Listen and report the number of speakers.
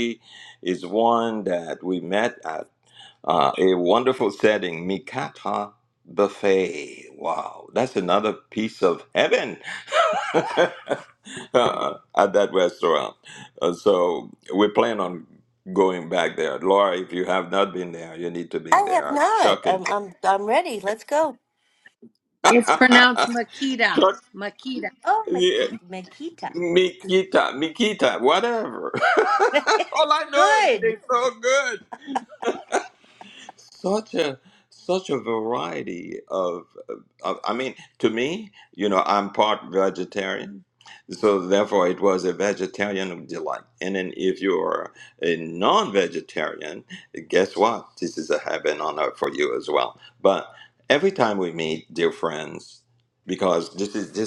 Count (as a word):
three